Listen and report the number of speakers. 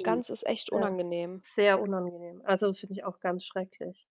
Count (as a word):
two